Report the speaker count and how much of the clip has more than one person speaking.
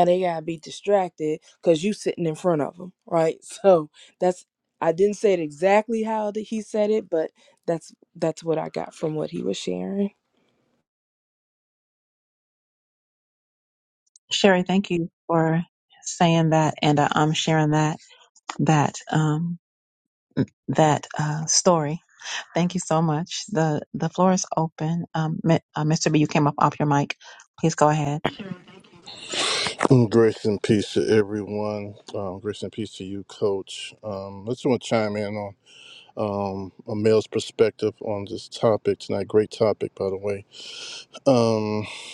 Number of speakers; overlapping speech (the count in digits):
3, no overlap